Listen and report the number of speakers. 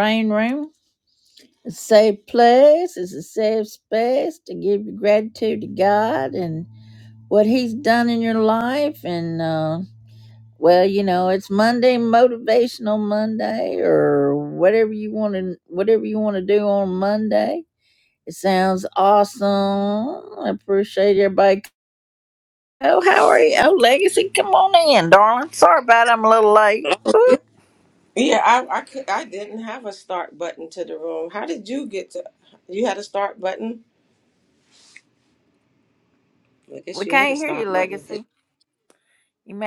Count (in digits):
2